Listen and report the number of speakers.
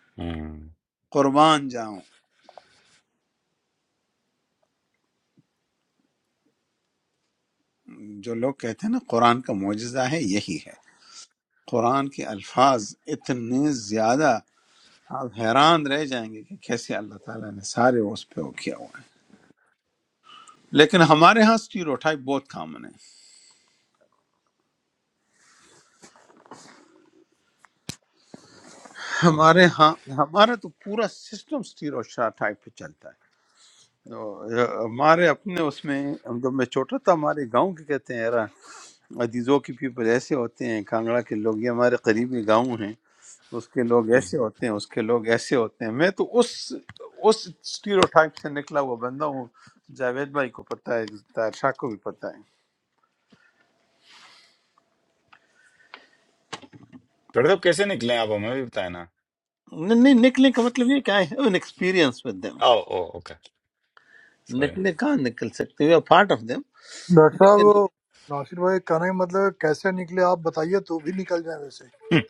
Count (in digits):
3